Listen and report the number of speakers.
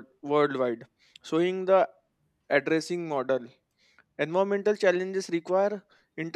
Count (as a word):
one